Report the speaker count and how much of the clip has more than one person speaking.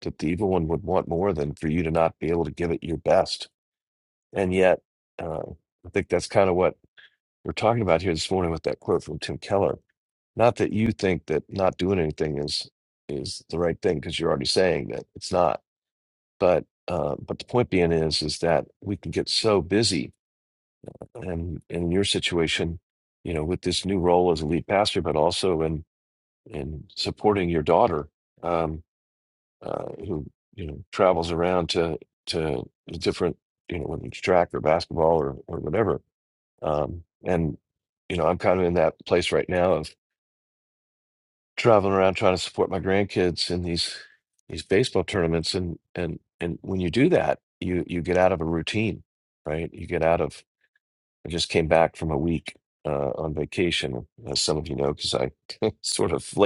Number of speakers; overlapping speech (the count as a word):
one, no overlap